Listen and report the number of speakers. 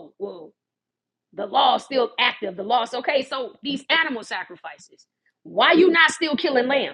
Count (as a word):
one